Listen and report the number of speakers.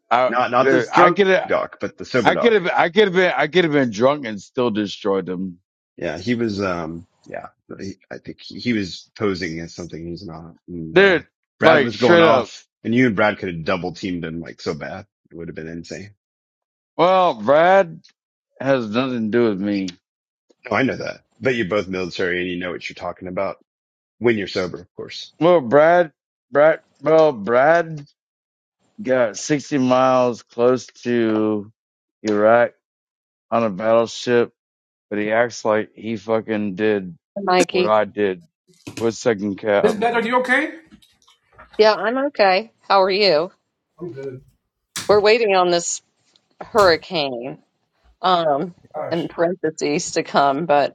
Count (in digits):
4